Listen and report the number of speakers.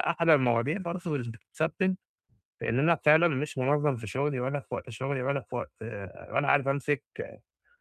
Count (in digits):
1